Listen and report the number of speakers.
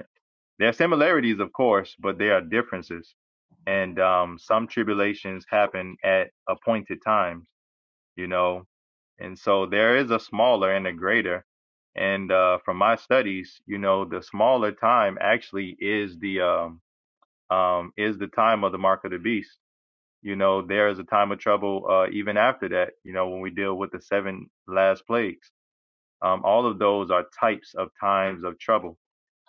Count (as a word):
one